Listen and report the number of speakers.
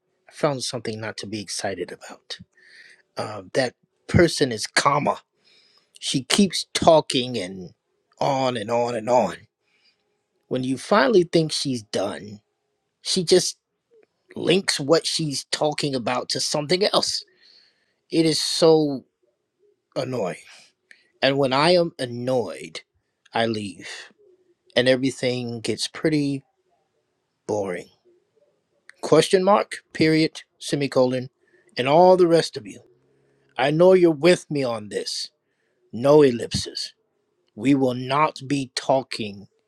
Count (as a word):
one